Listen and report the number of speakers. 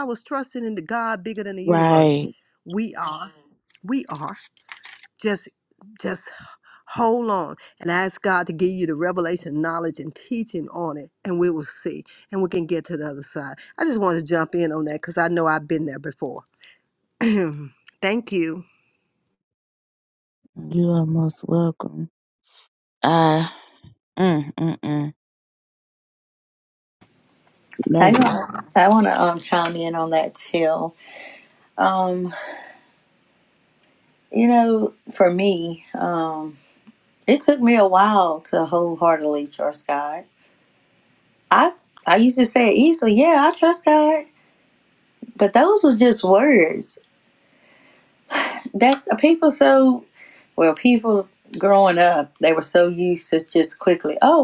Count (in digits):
3